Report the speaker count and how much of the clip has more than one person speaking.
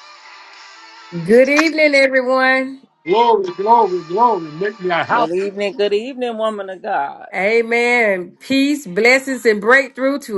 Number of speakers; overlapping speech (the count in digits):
3, about 2%